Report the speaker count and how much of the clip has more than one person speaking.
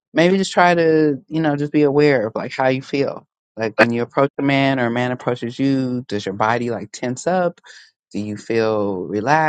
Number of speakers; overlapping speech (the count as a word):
one, no overlap